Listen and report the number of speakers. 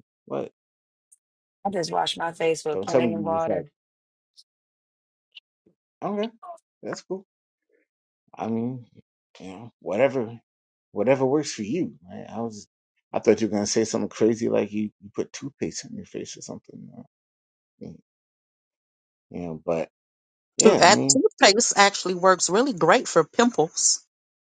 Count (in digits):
3